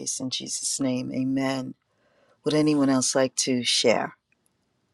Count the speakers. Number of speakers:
1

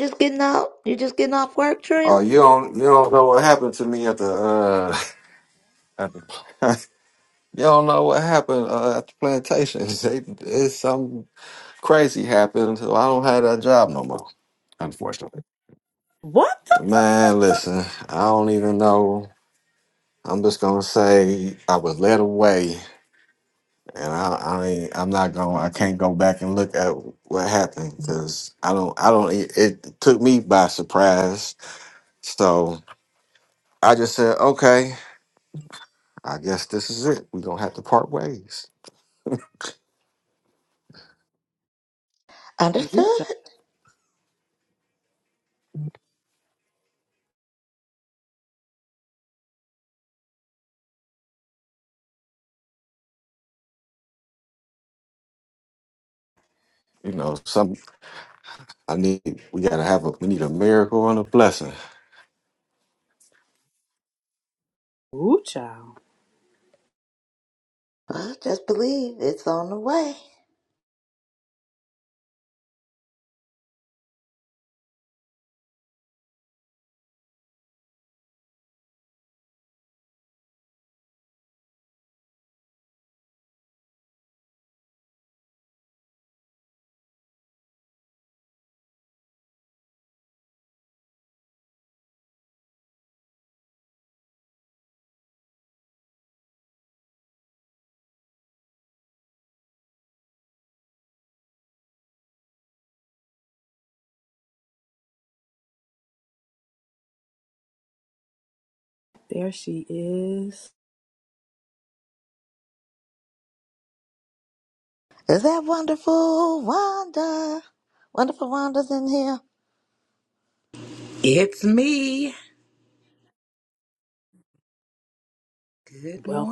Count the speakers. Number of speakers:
4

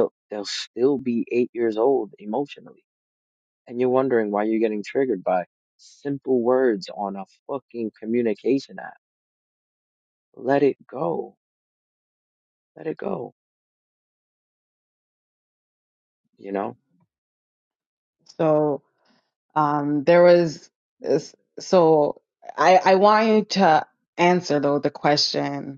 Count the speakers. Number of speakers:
2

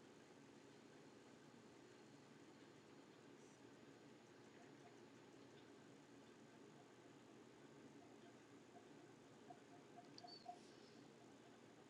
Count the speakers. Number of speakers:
0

